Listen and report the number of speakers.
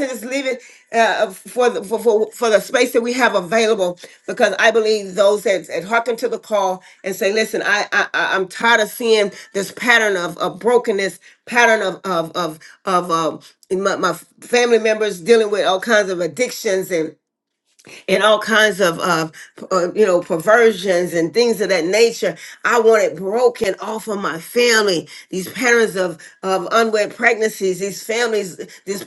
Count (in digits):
1